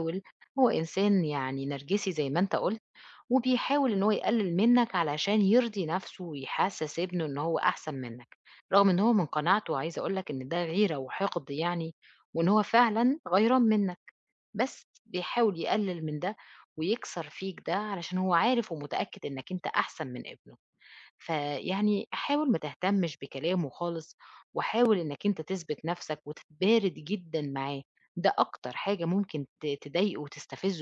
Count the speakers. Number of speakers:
1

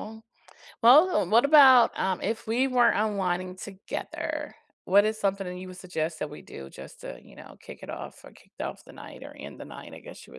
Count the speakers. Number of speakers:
1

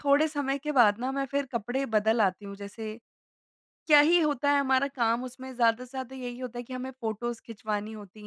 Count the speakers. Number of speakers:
1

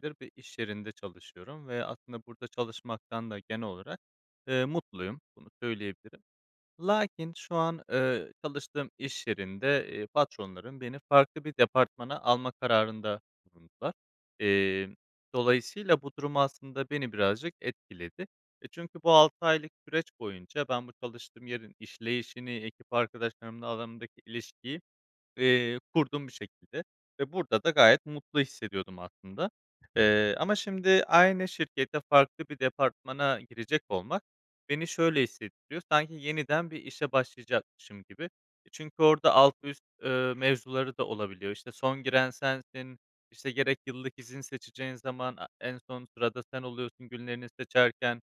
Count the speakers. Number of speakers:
1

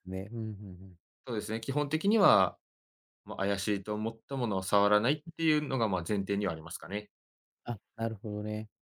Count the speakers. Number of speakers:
2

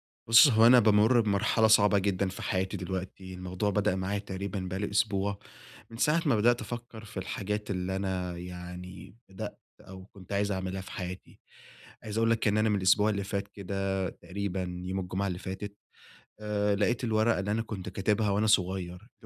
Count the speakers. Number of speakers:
1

